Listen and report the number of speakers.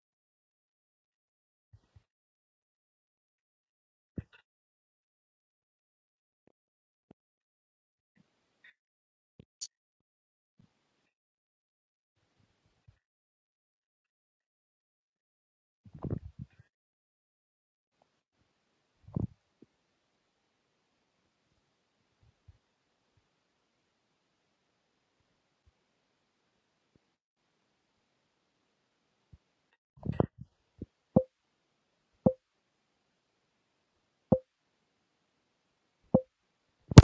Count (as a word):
zero